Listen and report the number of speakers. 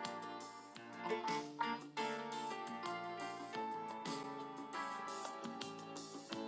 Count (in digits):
0